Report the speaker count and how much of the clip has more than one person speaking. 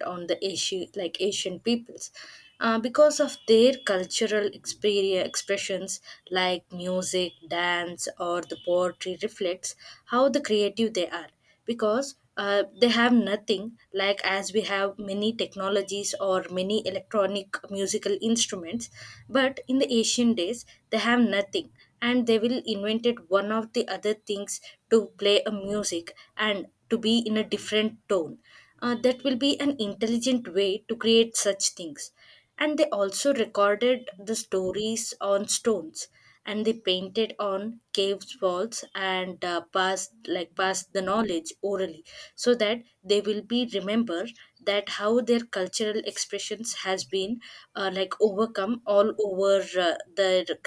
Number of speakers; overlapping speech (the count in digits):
1, no overlap